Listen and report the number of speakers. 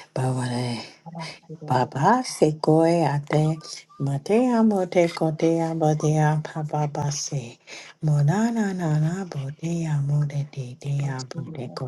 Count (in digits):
2